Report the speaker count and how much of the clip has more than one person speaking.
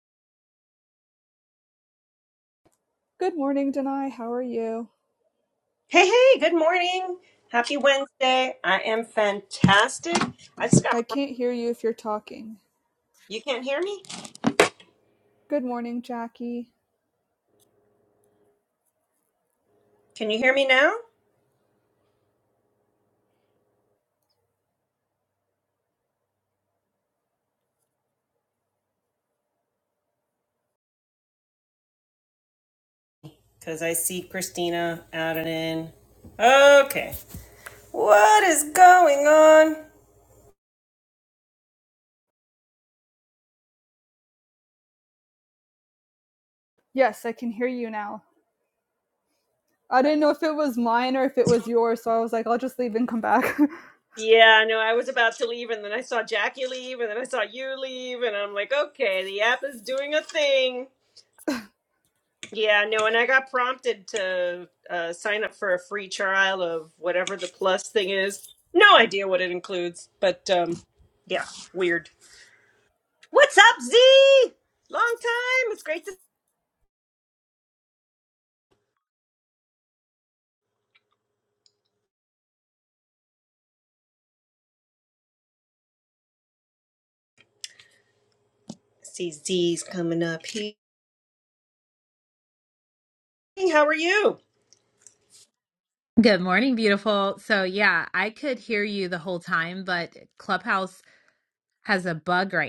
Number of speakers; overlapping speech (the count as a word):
three, under 1%